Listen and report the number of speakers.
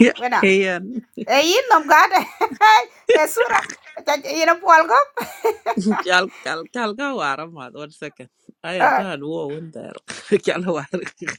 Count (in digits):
2